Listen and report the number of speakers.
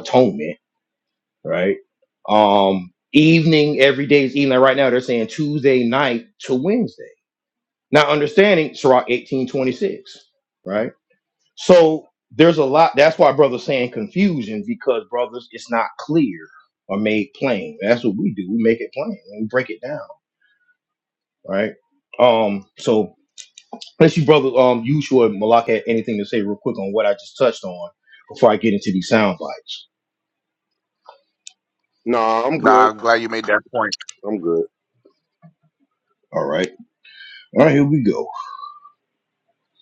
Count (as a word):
three